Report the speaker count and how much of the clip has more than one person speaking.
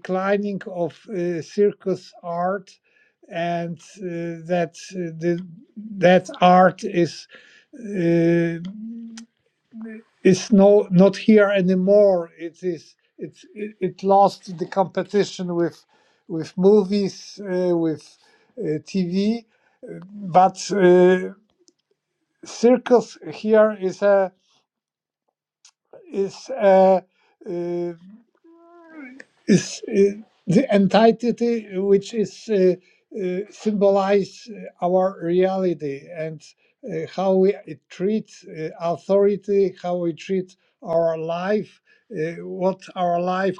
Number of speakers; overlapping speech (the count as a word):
one, no overlap